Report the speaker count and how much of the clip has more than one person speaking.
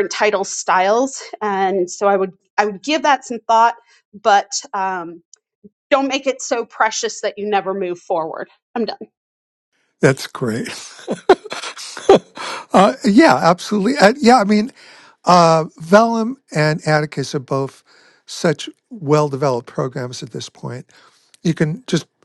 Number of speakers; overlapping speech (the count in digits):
2, no overlap